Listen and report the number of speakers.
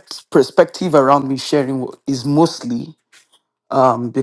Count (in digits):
1